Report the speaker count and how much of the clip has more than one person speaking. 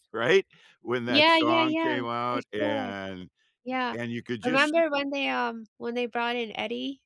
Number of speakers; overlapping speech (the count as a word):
two, about 31%